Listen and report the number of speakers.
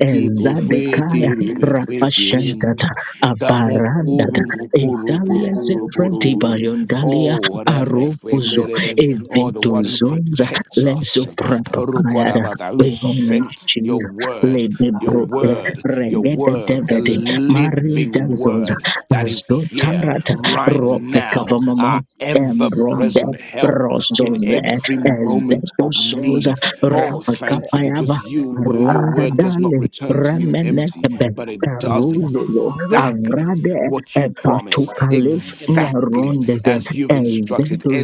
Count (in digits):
3